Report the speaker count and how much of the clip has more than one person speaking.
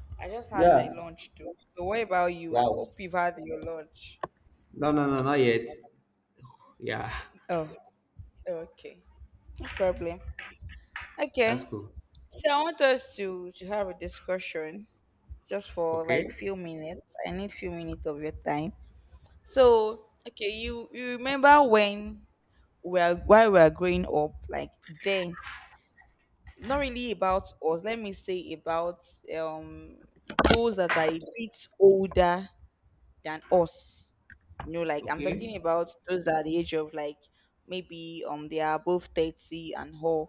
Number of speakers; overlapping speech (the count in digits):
2, about 5%